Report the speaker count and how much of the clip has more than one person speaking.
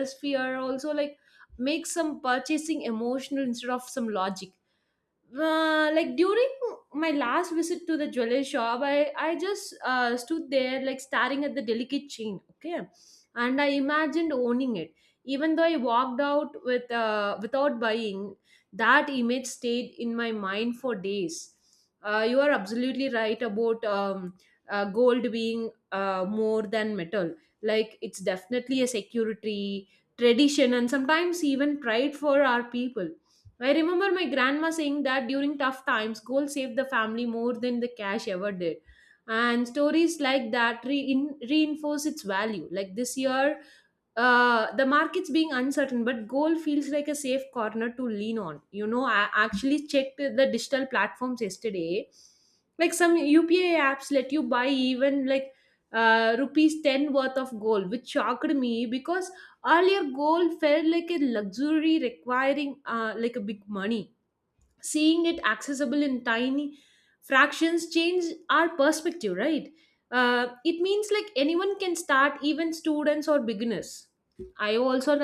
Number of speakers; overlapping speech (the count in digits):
1, no overlap